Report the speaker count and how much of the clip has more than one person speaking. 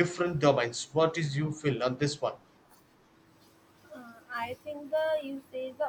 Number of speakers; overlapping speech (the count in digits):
2, no overlap